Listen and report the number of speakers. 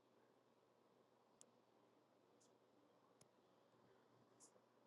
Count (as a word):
zero